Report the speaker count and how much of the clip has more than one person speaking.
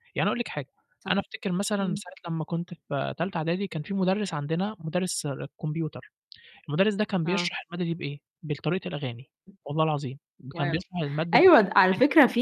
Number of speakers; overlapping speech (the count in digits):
2, about 8%